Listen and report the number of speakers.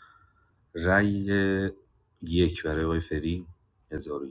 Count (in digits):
1